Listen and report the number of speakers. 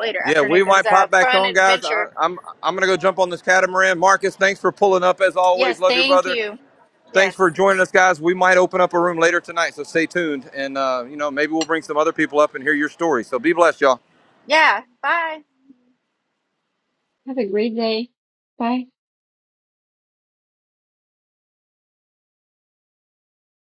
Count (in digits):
3